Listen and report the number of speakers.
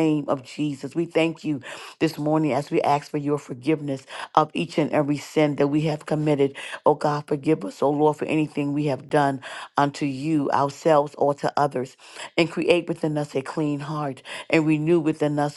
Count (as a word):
one